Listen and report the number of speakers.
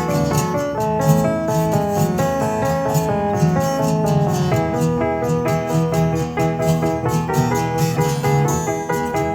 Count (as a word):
zero